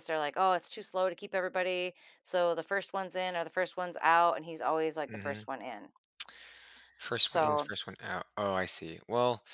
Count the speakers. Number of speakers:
two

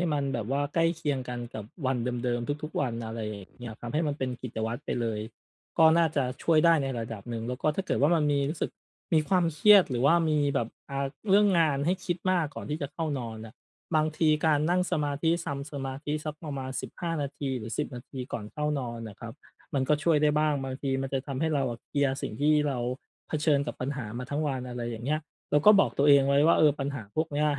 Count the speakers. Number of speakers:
one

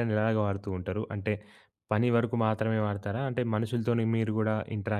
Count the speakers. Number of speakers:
one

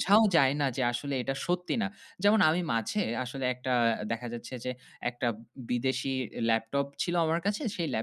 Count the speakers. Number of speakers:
one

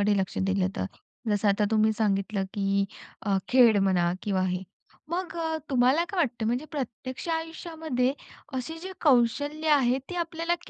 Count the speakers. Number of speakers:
one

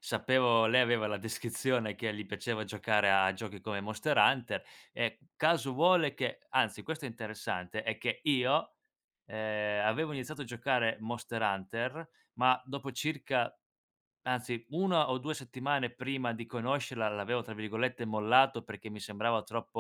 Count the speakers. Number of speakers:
one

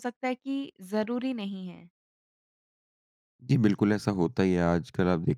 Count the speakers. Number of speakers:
two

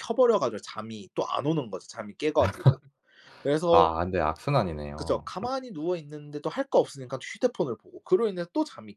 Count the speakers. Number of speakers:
two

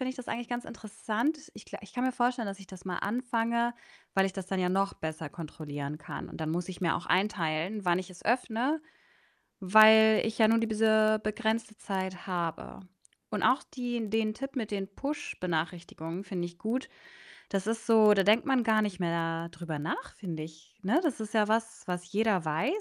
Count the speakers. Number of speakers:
one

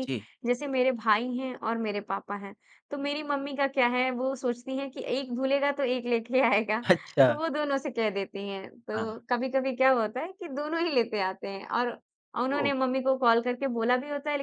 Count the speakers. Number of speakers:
two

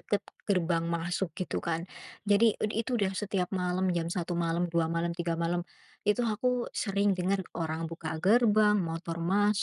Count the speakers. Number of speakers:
one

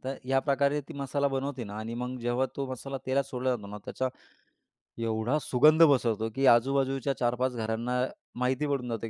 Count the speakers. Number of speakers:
one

